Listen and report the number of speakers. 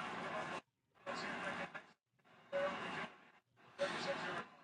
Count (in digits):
0